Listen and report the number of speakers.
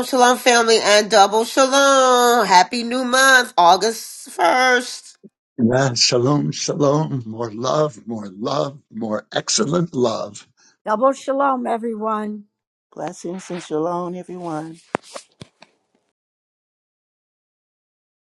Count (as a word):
four